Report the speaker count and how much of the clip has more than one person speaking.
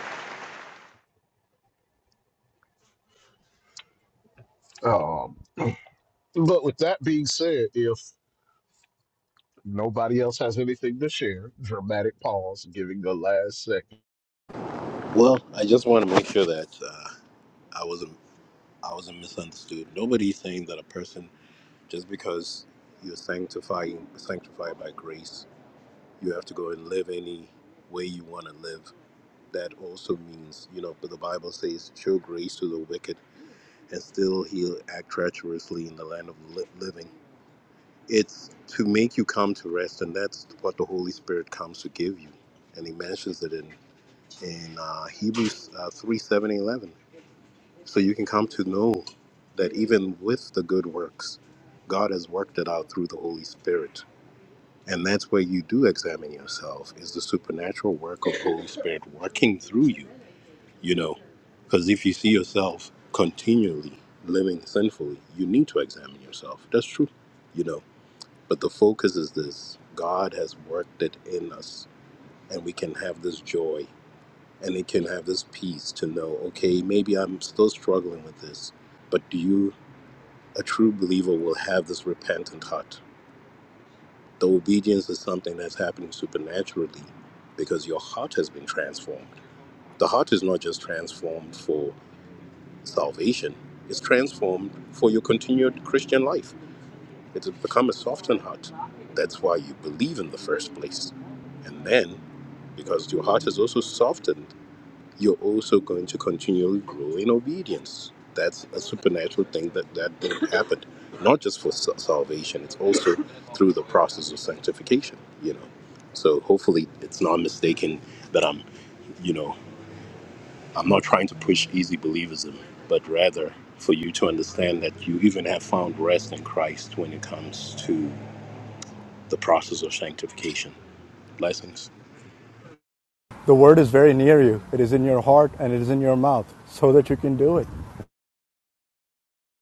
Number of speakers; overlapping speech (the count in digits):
3, no overlap